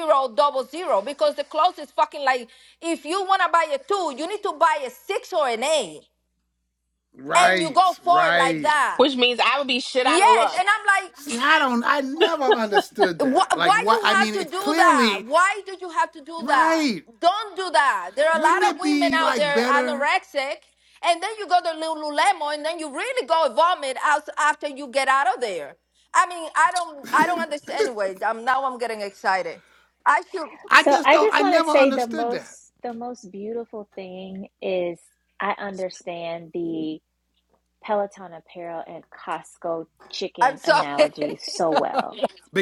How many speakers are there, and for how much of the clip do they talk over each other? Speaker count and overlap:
four, about 22%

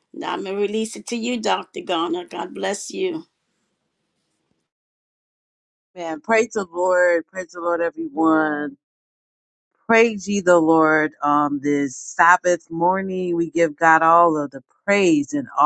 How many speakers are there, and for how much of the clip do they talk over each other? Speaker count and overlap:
two, no overlap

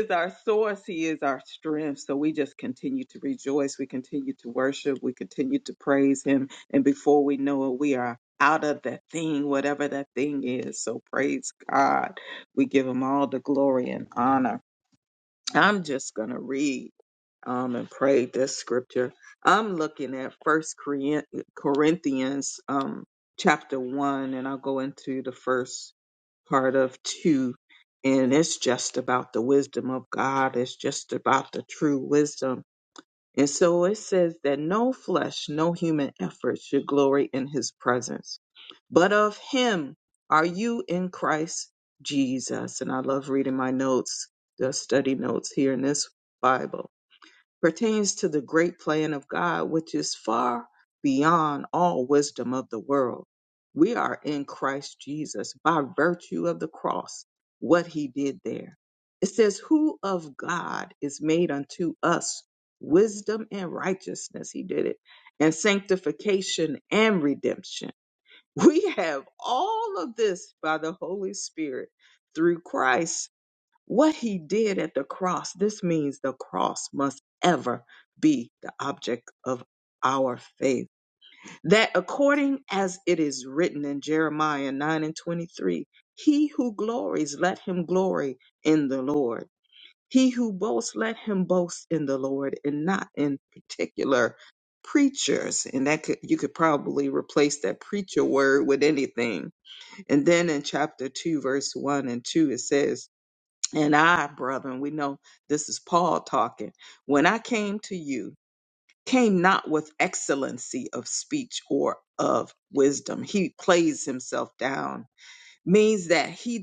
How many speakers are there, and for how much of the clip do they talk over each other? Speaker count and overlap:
one, no overlap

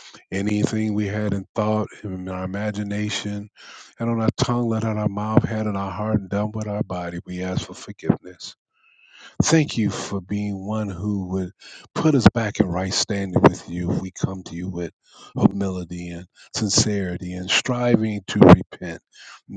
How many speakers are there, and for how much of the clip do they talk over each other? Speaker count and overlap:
one, no overlap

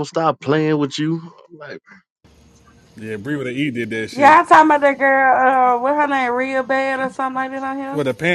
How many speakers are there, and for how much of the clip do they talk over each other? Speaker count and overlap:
three, about 4%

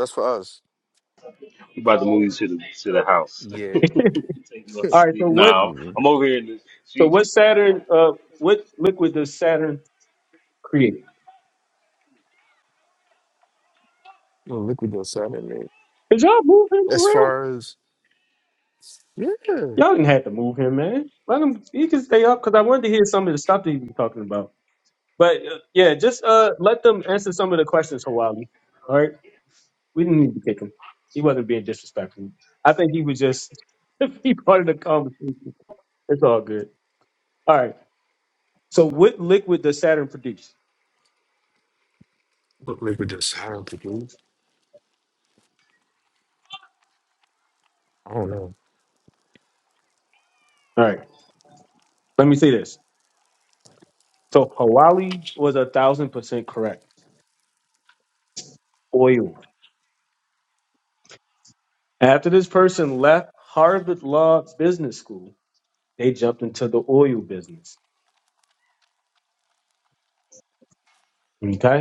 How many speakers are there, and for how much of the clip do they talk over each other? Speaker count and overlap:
three, about 3%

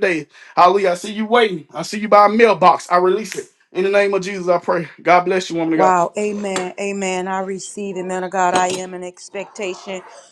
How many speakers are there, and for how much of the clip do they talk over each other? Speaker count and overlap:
two, about 2%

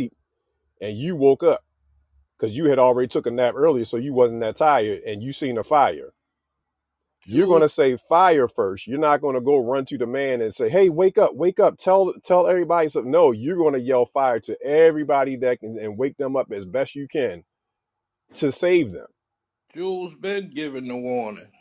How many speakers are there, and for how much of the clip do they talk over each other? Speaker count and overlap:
two, about 2%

